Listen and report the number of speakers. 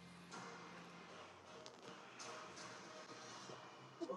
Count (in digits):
0